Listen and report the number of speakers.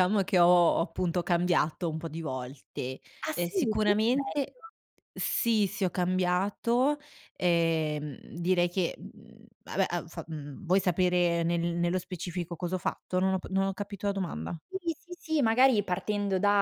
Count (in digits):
2